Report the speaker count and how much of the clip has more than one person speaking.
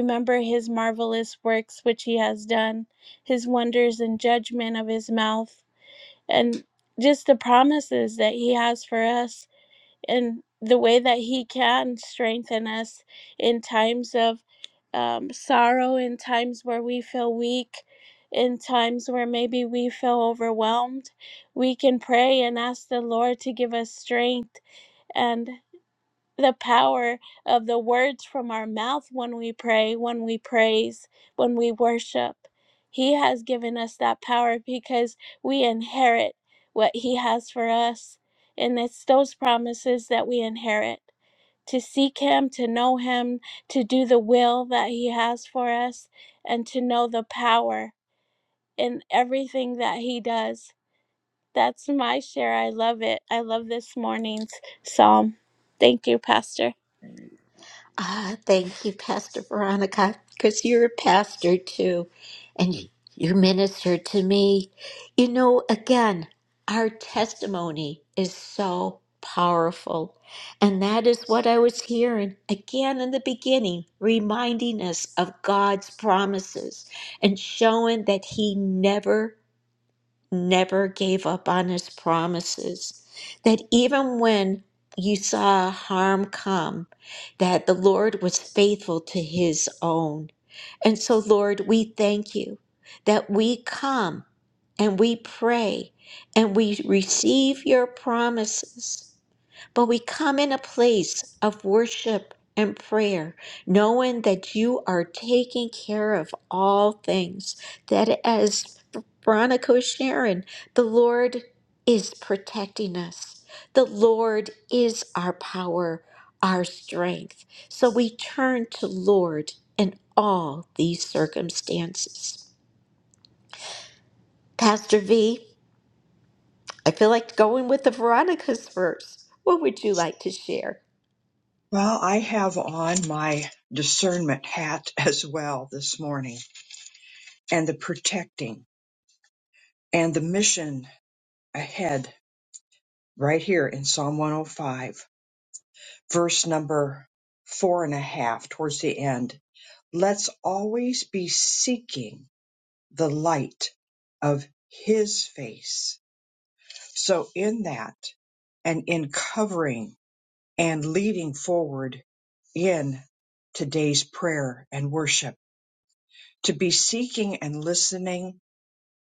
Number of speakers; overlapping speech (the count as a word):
three, no overlap